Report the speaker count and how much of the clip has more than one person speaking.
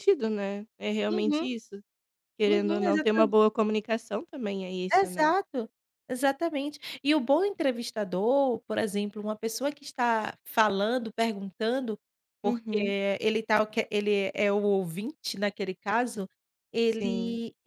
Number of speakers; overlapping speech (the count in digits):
2, about 14%